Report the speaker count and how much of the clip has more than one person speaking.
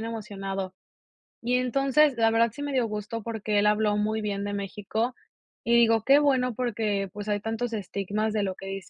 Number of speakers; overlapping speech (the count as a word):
one, no overlap